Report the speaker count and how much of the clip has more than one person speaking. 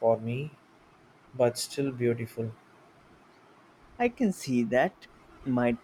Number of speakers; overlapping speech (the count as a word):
two, no overlap